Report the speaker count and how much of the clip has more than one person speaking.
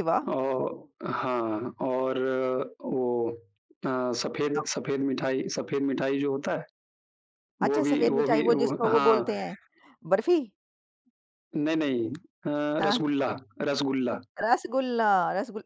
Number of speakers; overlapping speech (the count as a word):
two, about 14%